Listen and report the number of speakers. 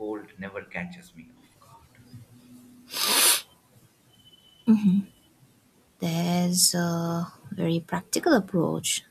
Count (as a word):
two